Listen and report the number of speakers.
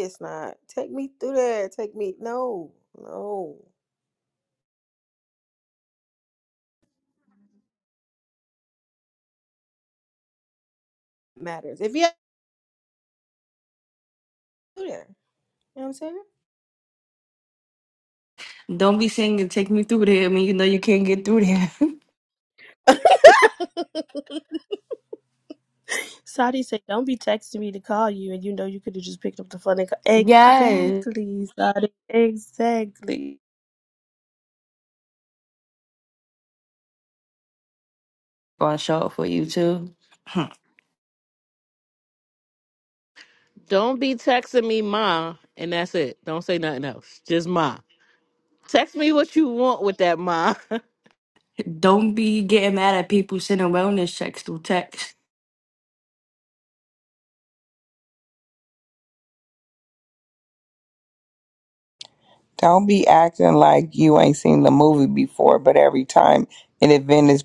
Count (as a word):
five